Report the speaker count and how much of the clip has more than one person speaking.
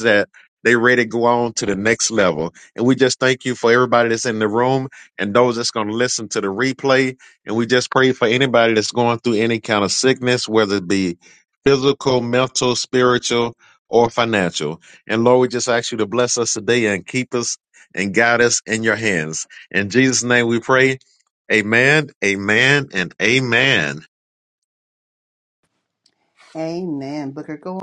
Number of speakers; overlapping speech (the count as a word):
two, no overlap